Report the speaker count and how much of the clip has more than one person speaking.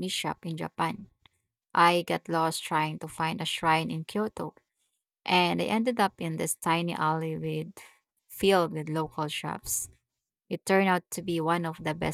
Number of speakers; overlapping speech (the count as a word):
one, no overlap